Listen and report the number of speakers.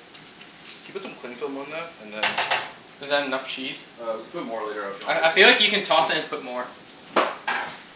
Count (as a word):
two